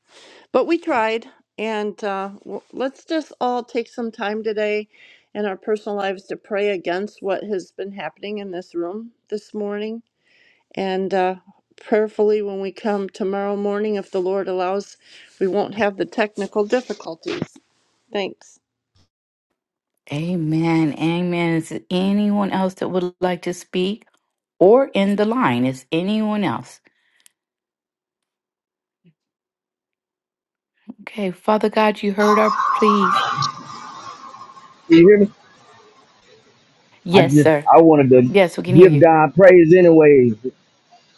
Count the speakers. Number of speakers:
three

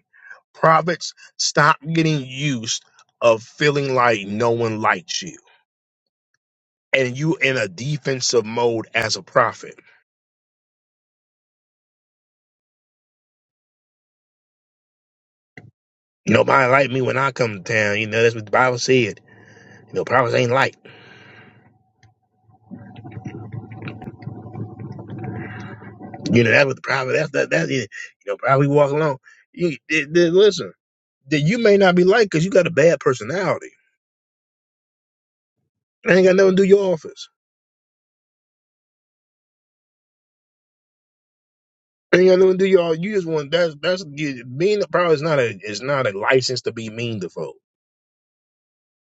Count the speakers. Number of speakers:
one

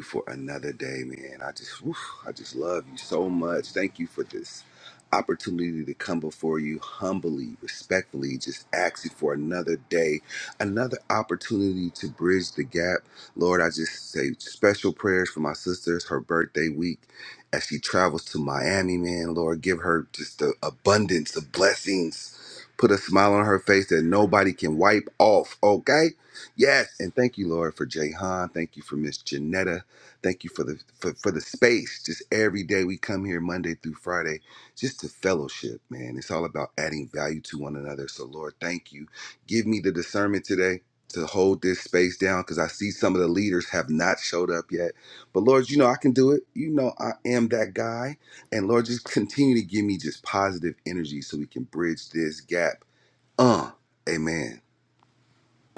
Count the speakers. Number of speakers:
one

